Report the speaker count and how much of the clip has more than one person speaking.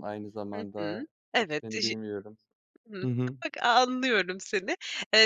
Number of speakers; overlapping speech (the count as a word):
two, about 19%